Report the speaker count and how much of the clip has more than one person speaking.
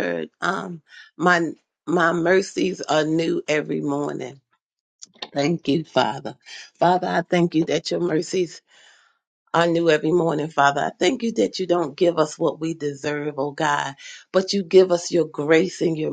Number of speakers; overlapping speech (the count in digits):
1, no overlap